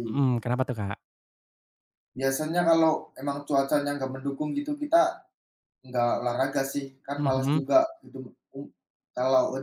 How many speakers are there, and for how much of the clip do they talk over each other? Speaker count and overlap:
2, about 5%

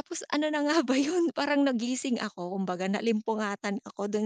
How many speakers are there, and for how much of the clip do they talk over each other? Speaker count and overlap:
1, no overlap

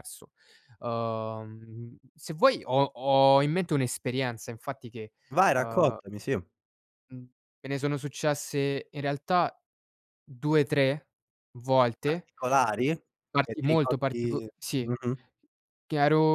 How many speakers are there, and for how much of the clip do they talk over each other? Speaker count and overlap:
2, about 10%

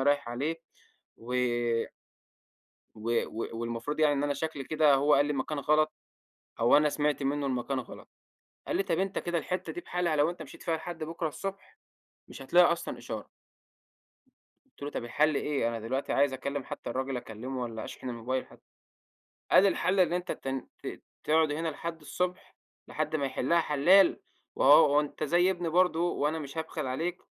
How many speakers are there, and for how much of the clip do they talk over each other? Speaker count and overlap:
1, no overlap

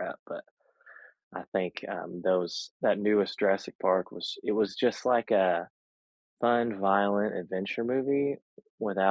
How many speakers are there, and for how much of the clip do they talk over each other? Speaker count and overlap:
1, no overlap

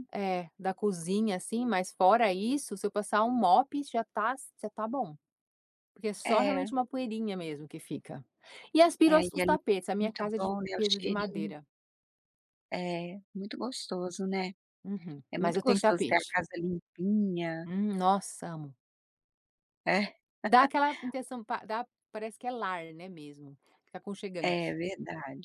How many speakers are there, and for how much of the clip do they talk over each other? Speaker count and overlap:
2, about 14%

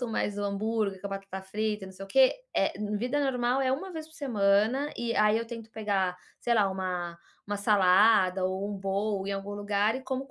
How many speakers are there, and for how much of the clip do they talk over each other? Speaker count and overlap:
1, no overlap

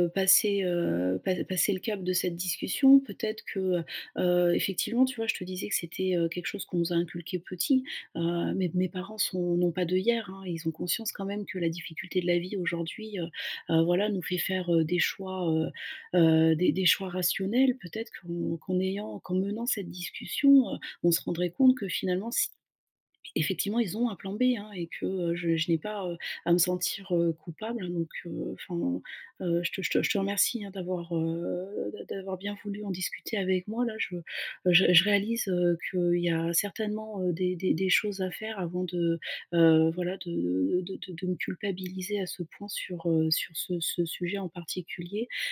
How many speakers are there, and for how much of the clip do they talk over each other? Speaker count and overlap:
1, no overlap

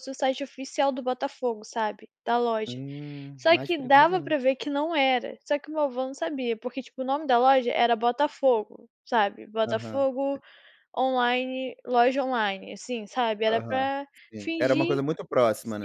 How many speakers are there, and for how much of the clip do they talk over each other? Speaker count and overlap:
2, about 15%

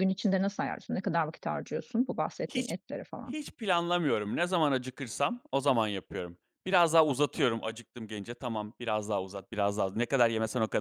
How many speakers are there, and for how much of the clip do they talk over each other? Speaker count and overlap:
2, about 3%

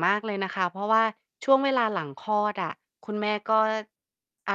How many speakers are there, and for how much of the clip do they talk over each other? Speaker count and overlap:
1, no overlap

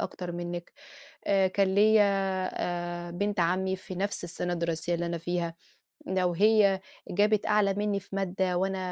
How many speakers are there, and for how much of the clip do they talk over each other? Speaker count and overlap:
1, no overlap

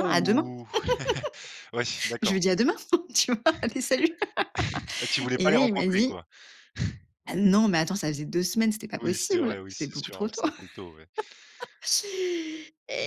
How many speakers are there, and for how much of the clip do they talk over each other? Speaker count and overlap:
2, about 23%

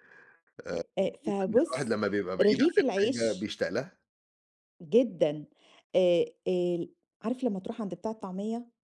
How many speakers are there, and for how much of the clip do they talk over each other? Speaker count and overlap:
2, about 18%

